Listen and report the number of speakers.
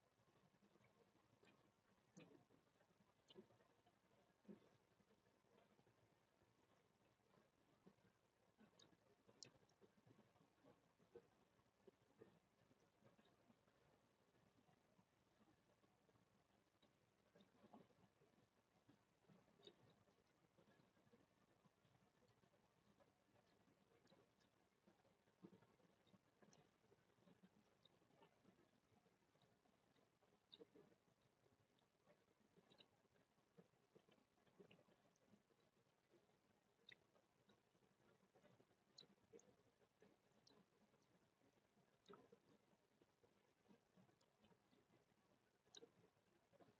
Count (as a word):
zero